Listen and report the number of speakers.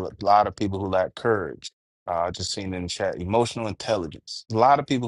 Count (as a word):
one